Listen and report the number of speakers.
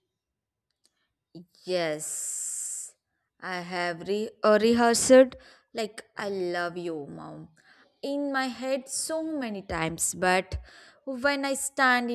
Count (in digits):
1